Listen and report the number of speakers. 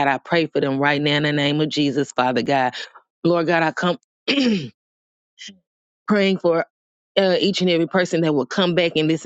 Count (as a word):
one